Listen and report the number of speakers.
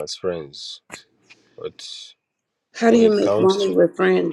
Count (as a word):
two